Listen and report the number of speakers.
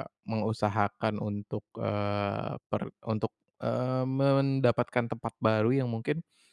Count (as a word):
one